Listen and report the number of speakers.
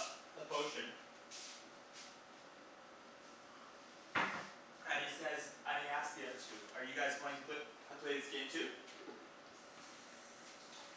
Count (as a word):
one